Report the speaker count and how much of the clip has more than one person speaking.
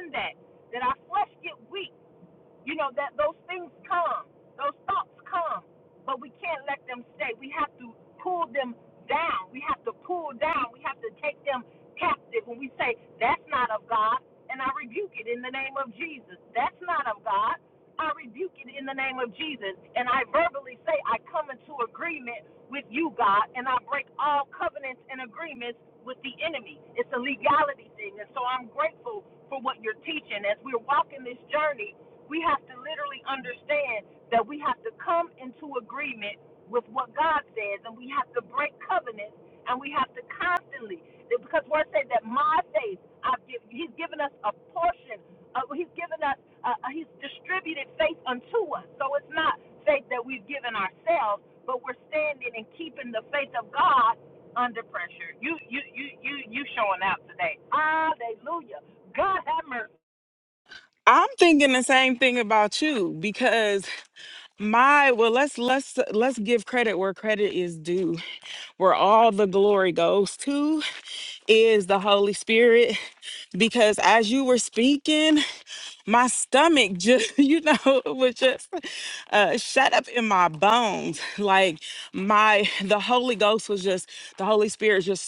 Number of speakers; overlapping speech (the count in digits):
2, no overlap